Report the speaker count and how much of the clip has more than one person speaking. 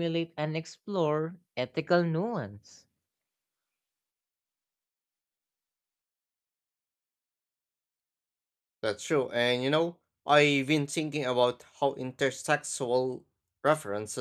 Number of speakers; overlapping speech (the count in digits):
2, no overlap